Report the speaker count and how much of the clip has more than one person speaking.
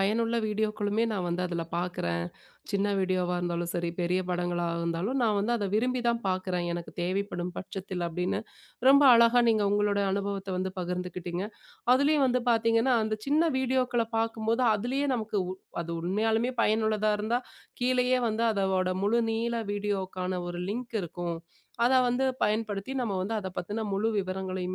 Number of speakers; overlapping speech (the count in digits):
1, no overlap